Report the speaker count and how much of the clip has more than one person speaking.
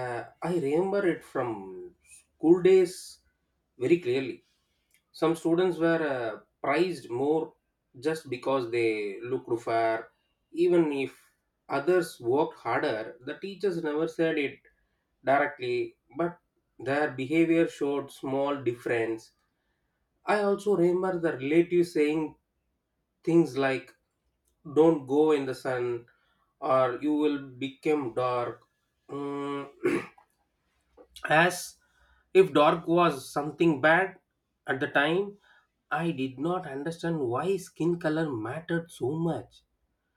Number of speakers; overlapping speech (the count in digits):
1, no overlap